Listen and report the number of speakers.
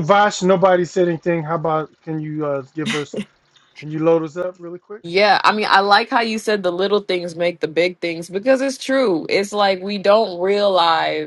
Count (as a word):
two